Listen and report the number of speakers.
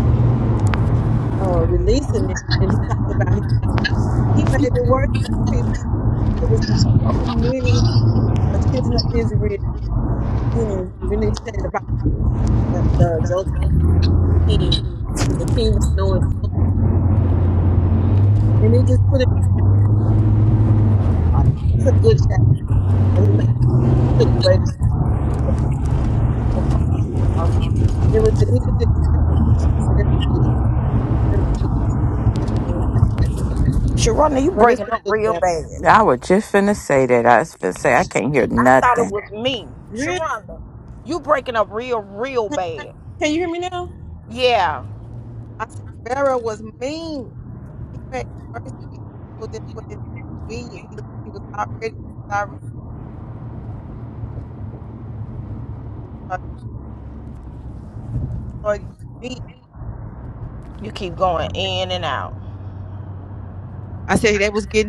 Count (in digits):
3